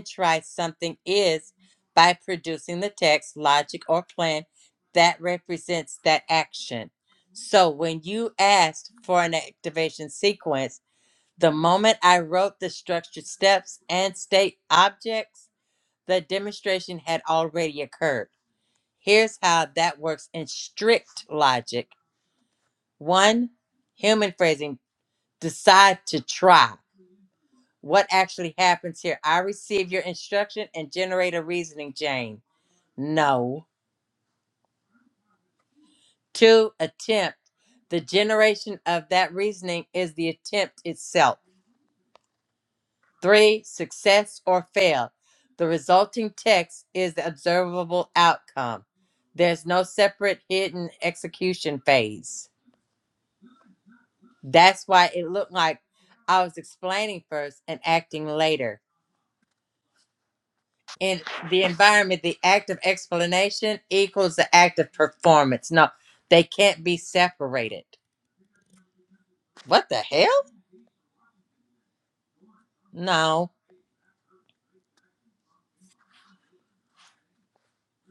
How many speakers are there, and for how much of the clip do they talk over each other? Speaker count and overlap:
one, no overlap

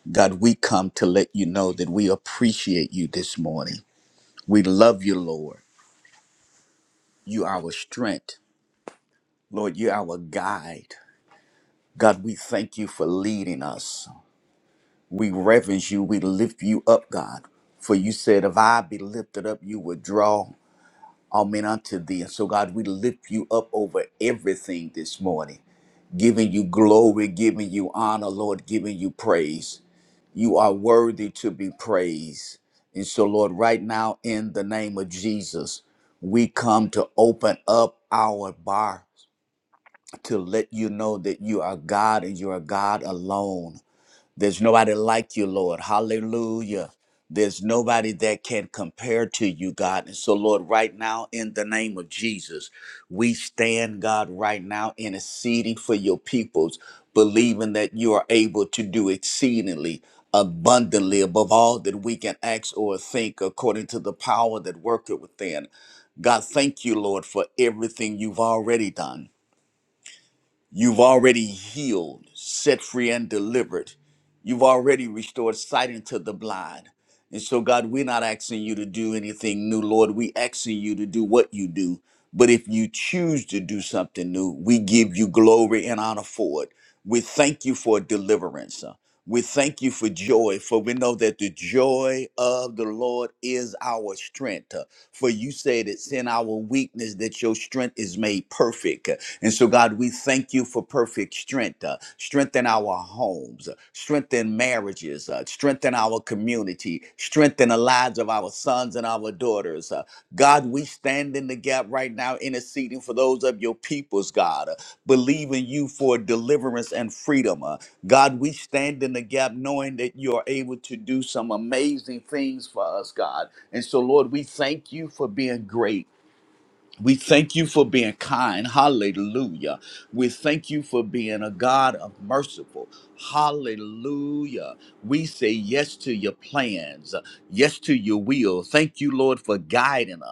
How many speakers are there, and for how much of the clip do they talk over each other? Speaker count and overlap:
one, no overlap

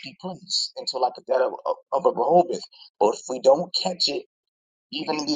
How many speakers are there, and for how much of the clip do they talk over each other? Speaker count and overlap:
one, no overlap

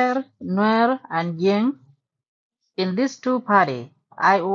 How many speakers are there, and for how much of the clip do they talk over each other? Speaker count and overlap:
one, no overlap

